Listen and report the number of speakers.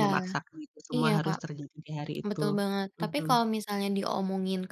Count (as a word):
two